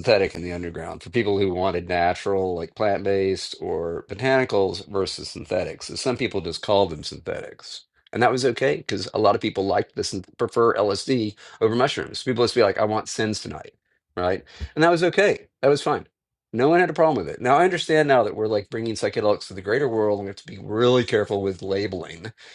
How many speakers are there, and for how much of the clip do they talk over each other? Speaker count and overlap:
one, no overlap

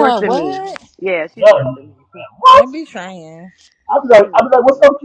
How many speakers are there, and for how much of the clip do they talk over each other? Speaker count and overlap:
three, about 36%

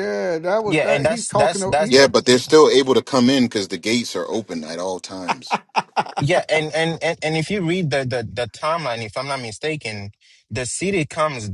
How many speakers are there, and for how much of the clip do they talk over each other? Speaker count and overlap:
three, about 13%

